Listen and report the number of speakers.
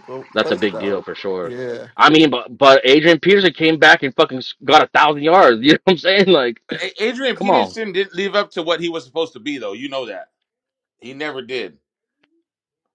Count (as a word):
three